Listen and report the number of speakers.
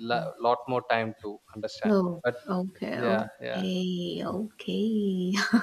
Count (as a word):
two